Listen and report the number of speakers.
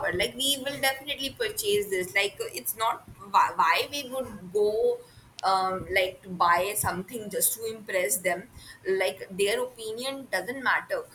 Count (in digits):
1